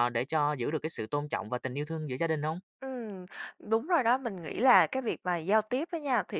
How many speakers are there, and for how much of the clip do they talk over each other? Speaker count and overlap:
2, no overlap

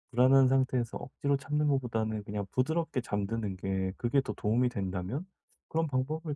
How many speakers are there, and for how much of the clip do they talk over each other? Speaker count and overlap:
1, no overlap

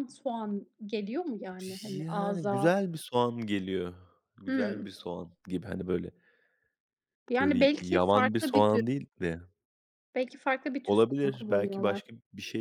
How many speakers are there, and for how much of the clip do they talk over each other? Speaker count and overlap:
2, about 30%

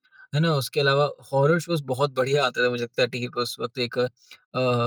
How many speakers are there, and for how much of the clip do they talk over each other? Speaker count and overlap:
1, no overlap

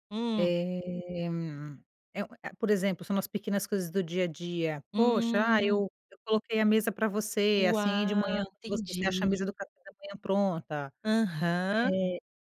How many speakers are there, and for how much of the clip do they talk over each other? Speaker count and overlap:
2, about 24%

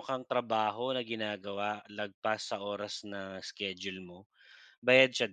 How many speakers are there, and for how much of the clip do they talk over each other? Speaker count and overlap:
1, no overlap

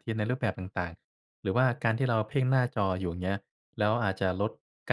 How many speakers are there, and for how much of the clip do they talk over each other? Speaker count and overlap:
1, no overlap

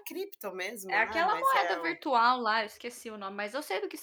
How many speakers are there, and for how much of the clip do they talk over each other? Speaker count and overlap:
2, about 26%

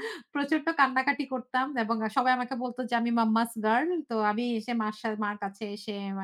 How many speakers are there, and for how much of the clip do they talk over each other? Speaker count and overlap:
1, no overlap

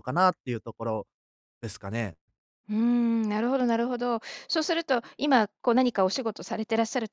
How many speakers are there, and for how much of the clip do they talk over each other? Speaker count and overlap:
2, no overlap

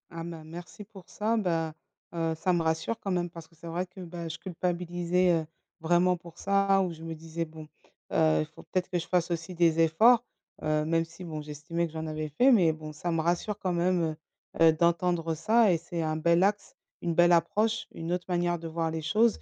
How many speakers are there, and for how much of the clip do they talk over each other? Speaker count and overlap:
1, no overlap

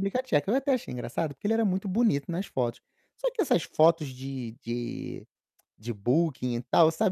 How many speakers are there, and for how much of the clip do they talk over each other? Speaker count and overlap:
1, no overlap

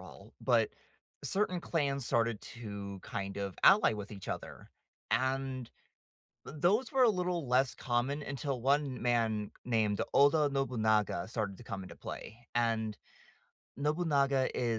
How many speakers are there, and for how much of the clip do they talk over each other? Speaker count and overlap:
1, no overlap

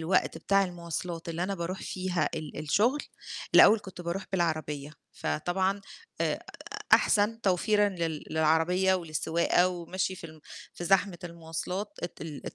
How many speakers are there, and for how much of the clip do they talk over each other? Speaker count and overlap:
1, no overlap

